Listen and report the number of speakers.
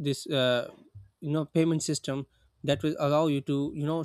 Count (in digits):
1